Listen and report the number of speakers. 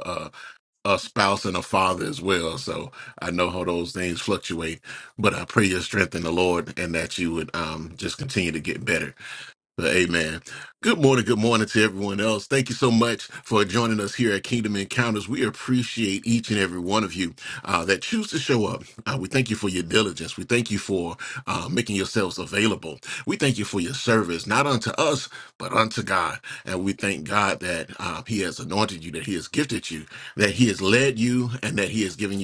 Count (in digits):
1